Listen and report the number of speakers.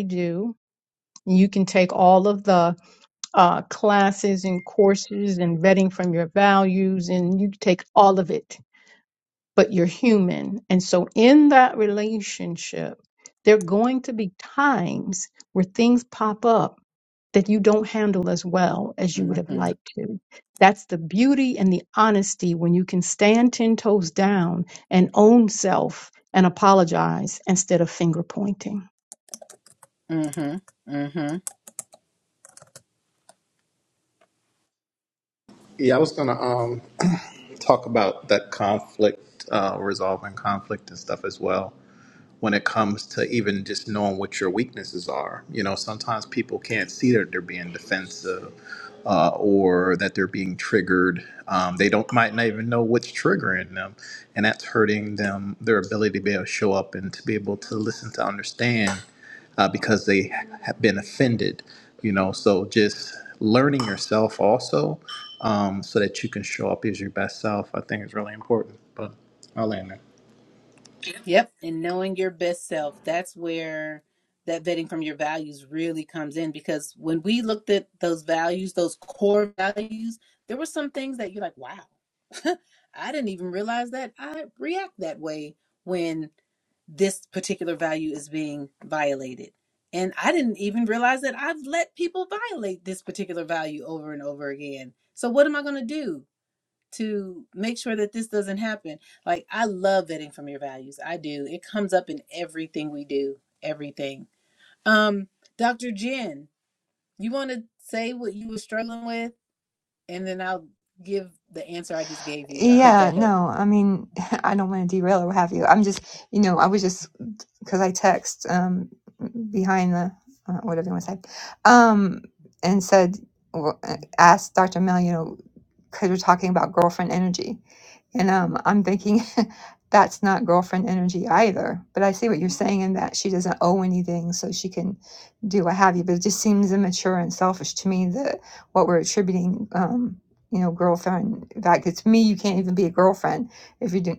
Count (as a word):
four